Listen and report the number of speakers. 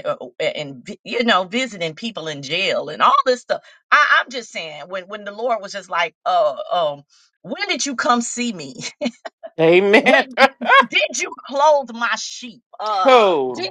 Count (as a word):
two